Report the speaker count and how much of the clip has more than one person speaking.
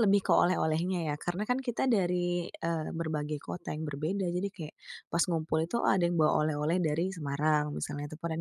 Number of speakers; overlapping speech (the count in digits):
1, no overlap